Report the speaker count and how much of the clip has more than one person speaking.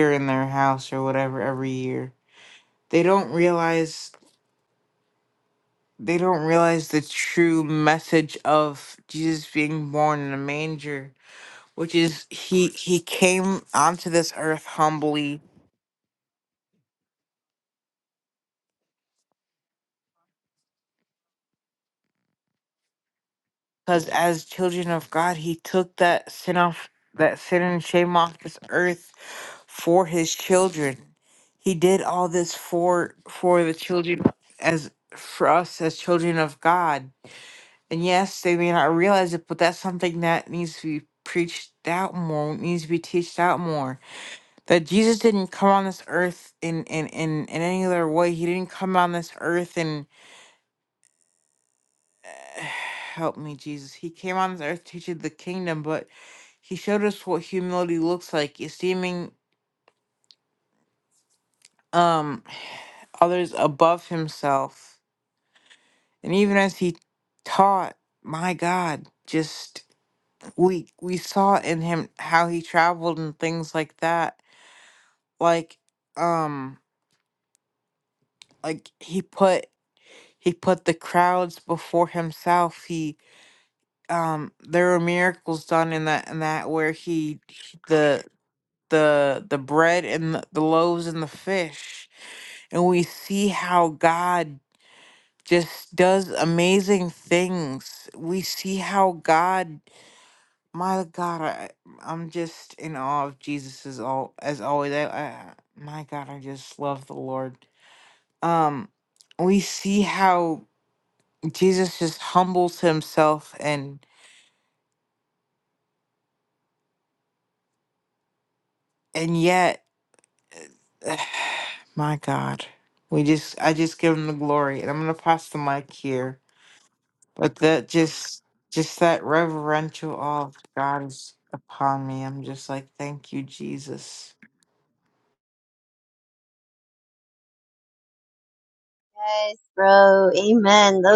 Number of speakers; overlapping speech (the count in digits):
2, no overlap